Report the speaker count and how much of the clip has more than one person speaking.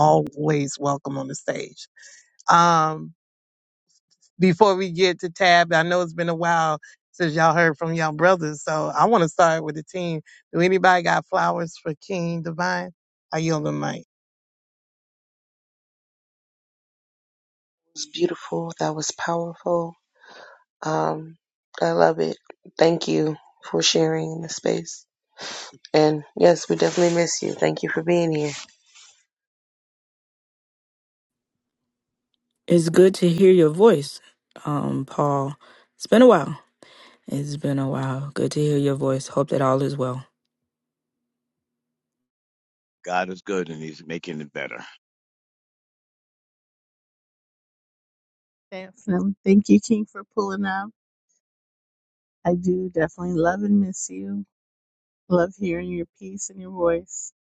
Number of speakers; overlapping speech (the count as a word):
five, no overlap